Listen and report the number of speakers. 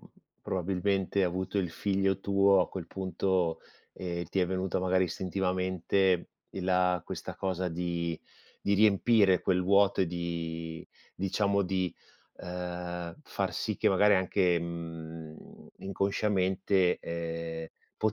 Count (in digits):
1